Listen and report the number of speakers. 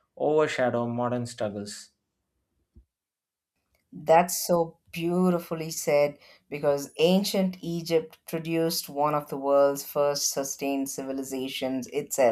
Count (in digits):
2